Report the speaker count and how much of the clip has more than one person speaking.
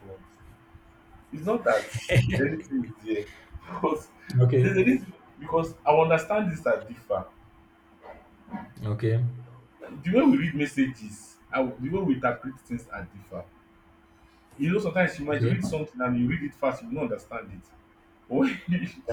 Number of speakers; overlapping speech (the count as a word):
two, about 3%